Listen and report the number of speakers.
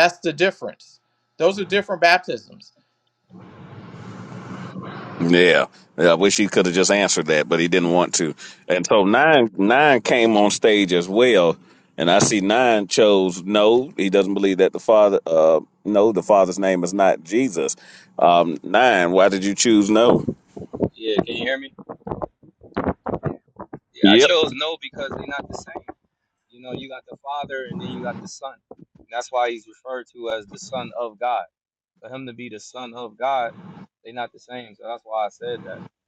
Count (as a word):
three